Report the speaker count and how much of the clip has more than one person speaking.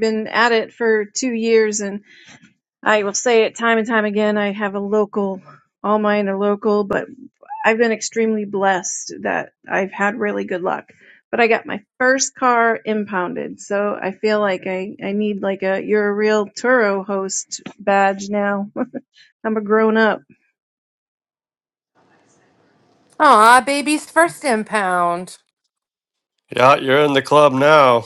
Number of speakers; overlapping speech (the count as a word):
three, no overlap